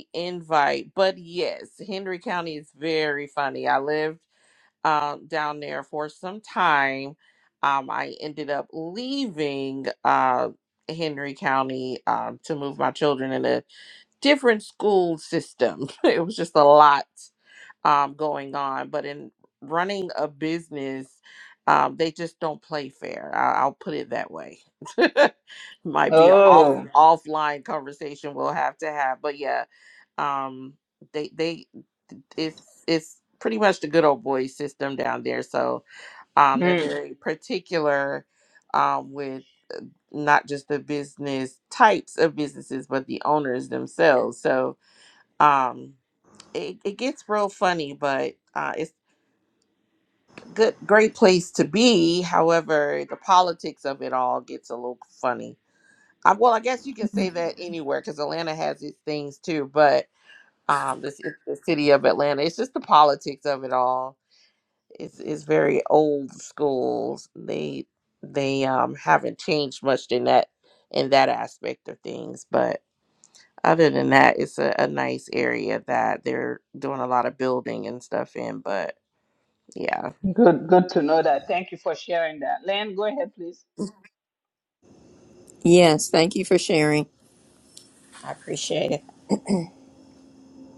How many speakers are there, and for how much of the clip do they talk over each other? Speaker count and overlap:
three, about 1%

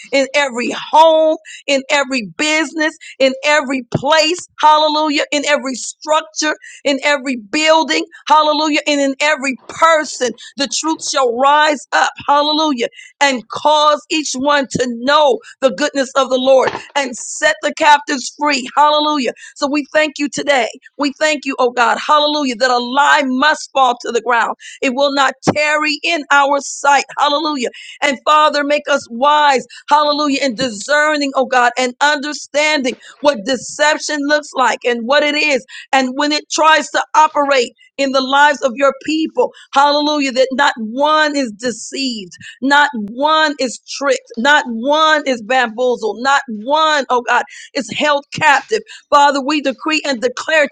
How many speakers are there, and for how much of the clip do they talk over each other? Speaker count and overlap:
one, no overlap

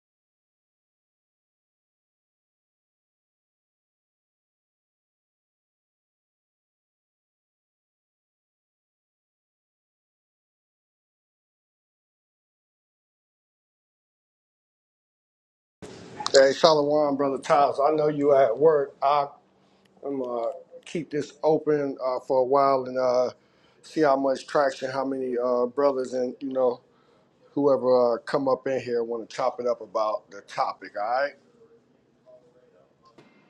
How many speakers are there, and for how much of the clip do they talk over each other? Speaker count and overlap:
one, no overlap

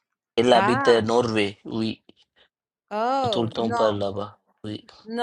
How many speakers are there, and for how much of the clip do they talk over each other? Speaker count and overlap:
two, about 23%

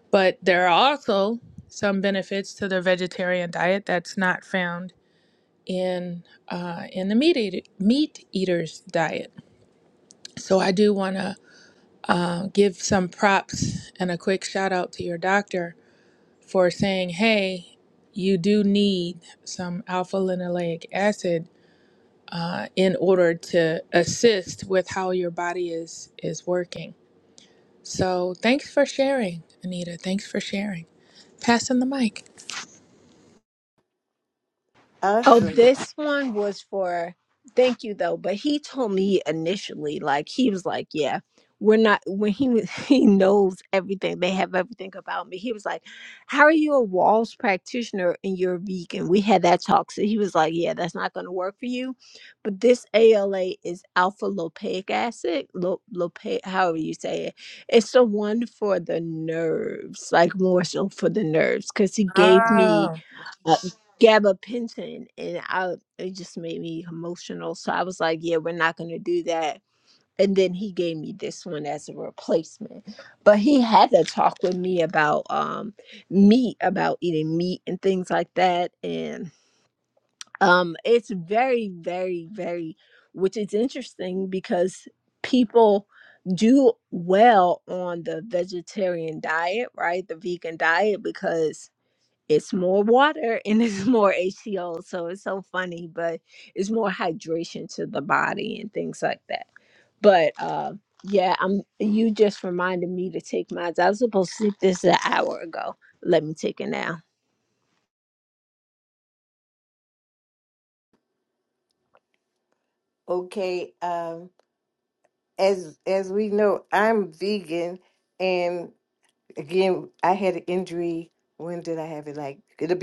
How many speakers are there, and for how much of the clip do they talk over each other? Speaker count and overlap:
three, about 1%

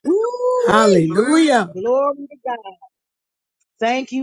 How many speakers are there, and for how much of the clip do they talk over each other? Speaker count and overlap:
two, about 4%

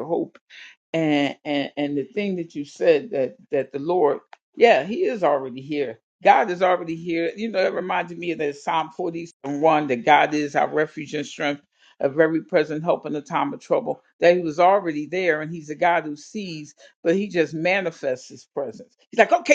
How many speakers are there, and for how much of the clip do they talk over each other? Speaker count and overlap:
one, no overlap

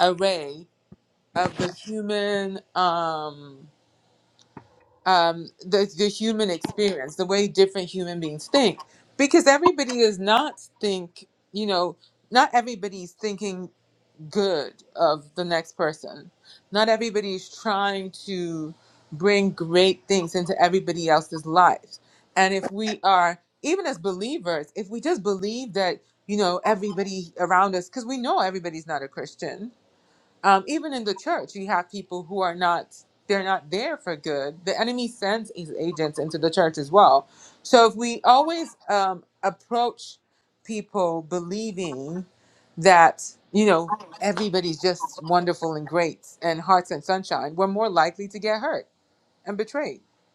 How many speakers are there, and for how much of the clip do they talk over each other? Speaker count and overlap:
one, no overlap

